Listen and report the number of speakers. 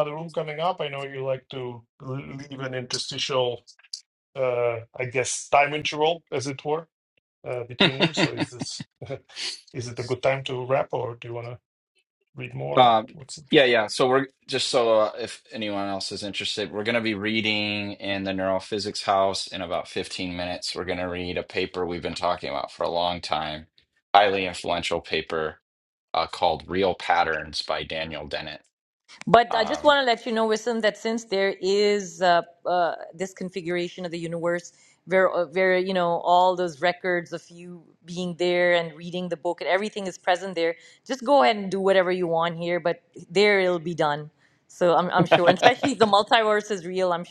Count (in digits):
3